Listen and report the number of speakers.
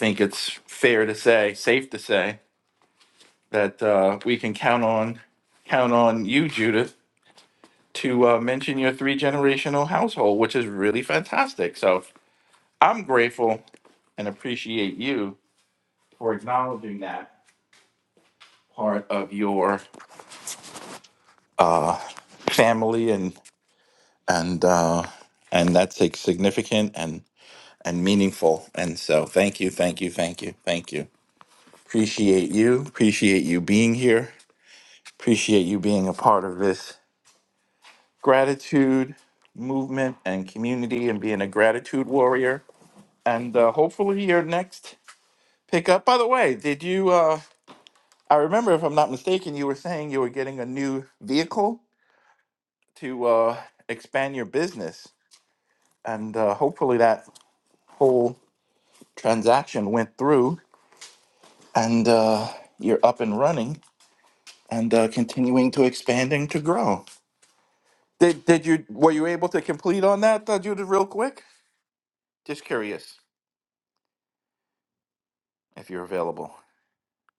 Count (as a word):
one